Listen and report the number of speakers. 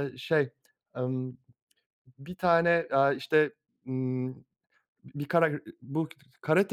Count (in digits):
1